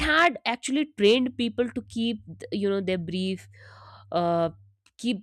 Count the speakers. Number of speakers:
one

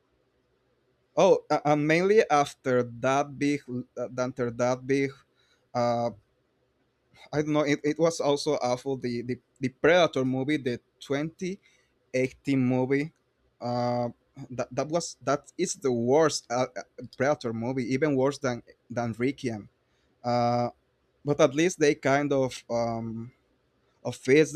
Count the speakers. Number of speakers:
one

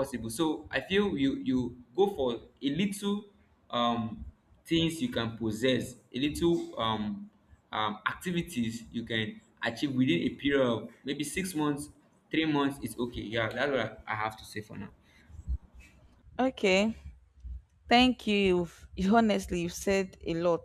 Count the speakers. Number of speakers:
two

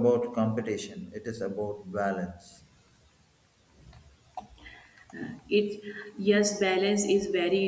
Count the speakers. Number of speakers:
two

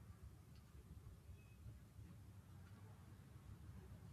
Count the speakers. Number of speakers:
zero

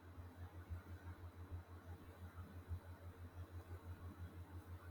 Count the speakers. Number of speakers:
zero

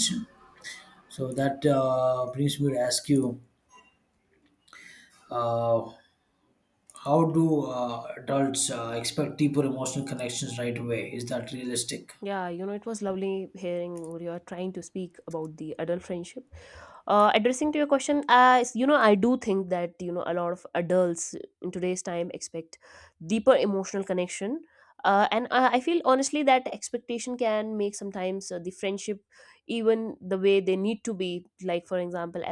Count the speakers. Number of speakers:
two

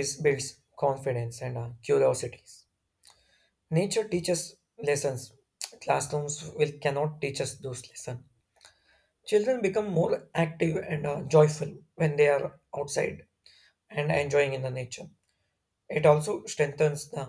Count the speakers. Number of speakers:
one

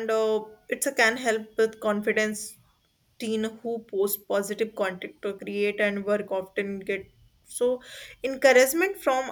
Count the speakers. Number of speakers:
one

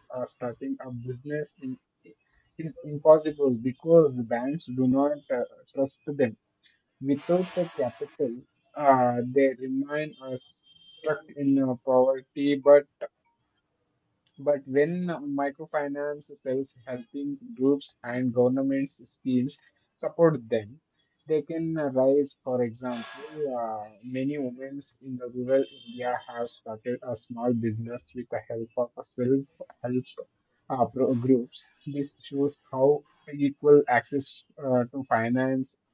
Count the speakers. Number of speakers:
one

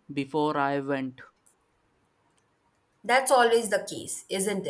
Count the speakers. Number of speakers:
two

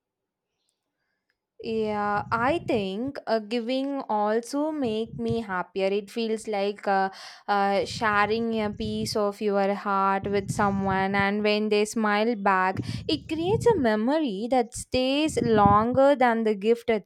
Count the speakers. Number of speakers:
one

